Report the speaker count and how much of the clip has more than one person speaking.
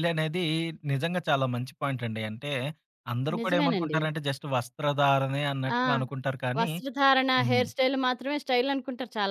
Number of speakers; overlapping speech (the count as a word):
two, about 15%